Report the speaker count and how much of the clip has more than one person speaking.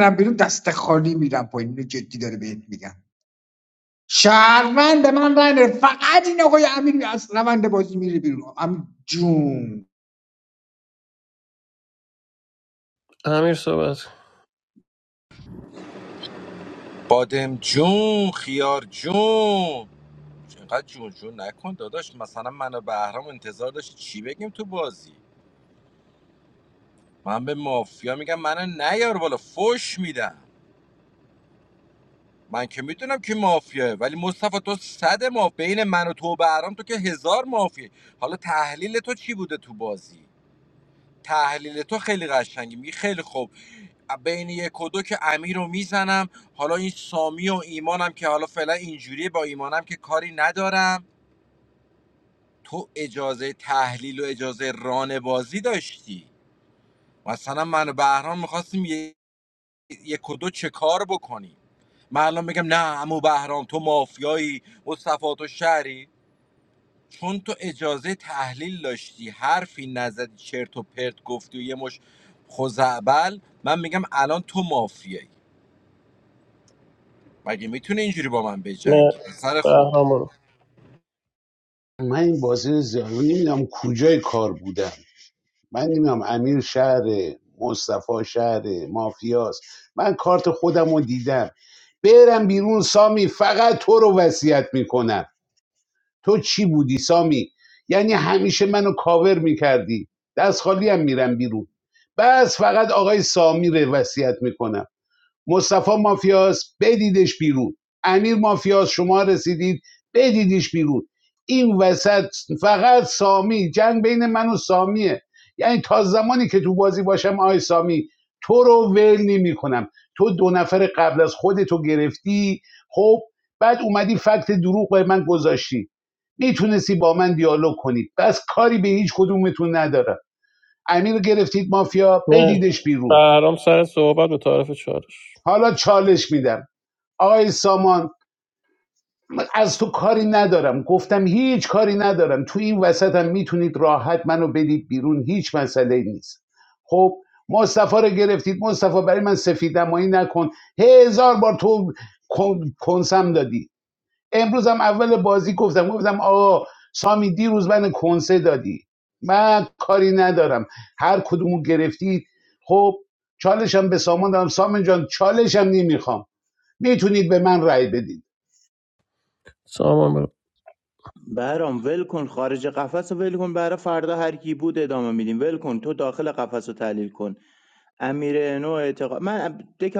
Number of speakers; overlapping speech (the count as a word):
five, about 1%